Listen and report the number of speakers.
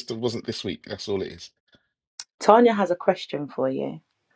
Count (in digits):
2